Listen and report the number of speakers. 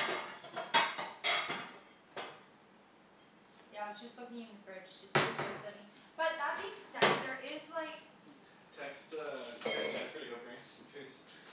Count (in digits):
2